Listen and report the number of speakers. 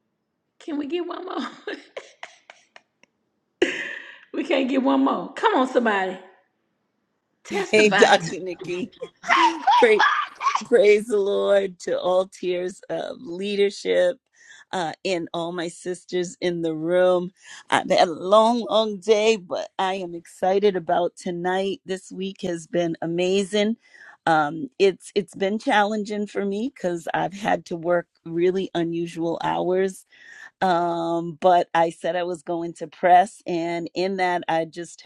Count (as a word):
two